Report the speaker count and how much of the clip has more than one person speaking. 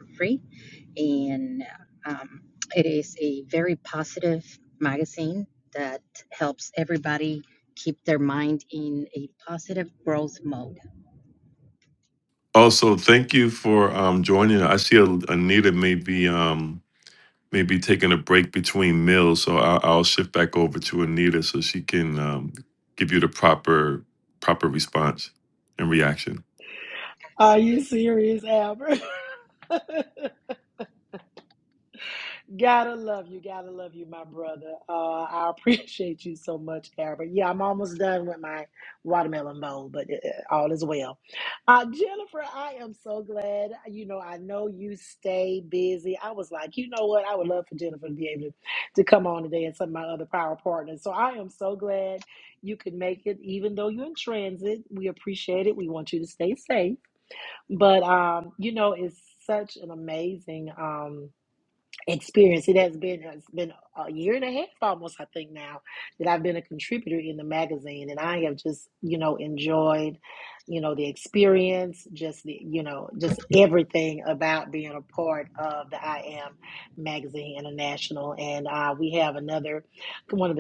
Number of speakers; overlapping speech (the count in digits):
3, about 1%